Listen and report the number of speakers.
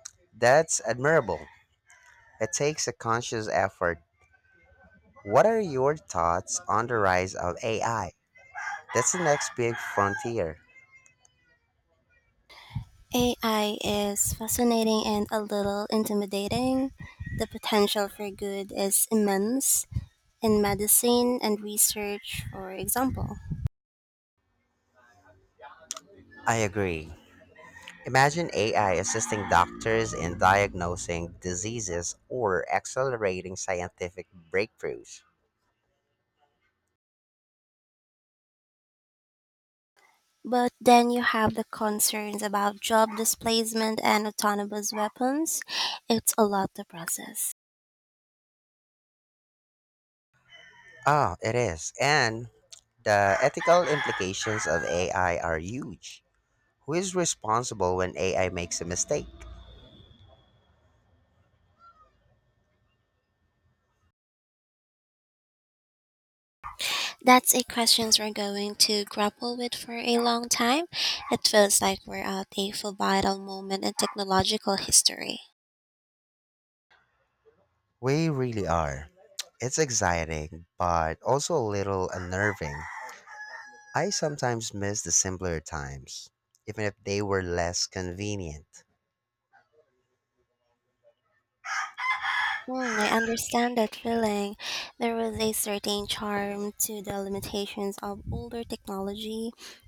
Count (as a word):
two